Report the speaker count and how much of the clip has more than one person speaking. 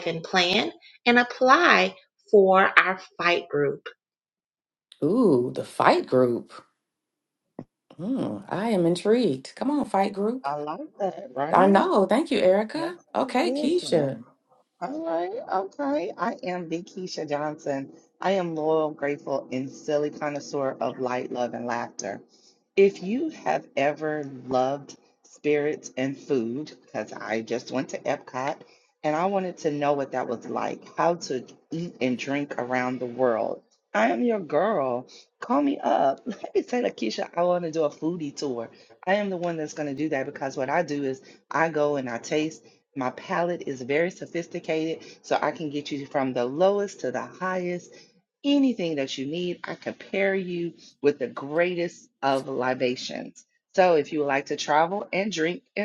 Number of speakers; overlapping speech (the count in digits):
3, about 3%